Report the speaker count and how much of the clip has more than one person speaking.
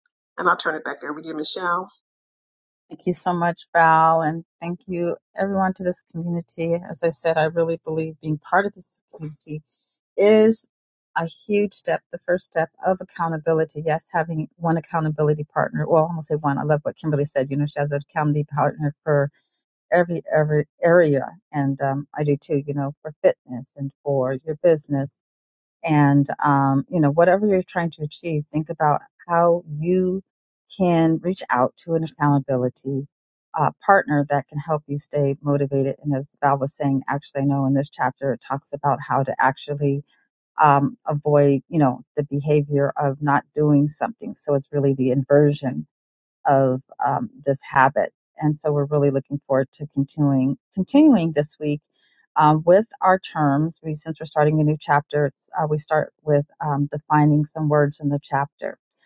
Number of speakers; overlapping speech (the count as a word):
two, no overlap